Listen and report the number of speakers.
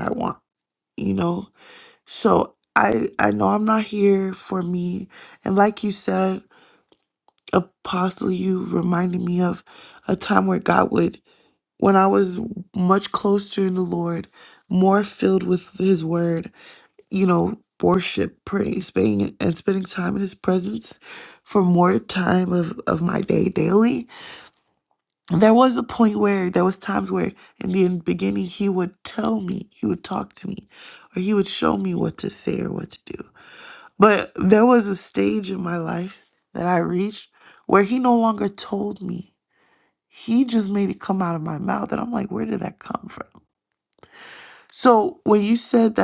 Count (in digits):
1